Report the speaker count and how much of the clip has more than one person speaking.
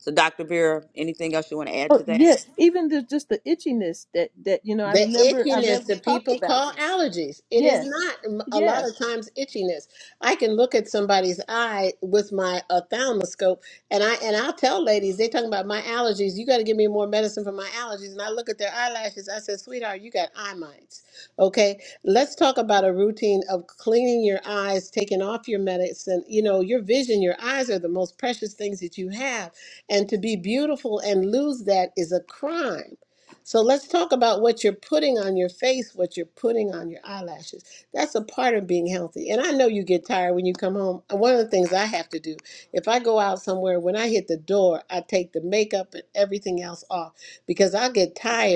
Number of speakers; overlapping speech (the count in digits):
3, about 6%